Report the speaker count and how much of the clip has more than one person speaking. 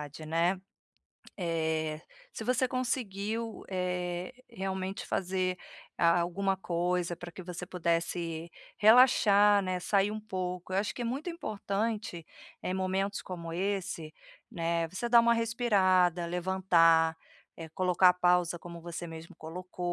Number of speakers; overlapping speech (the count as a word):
one, no overlap